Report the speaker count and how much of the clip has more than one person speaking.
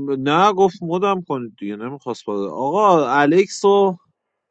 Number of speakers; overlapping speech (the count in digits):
1, no overlap